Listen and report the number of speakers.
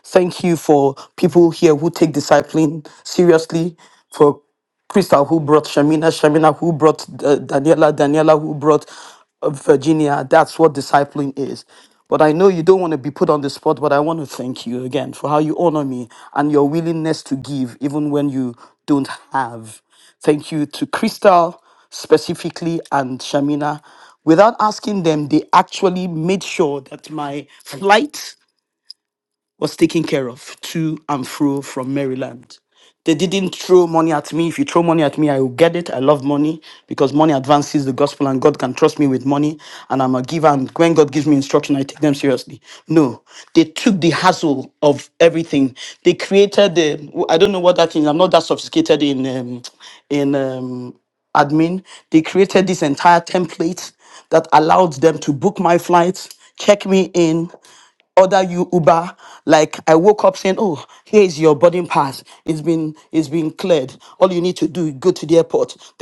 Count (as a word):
one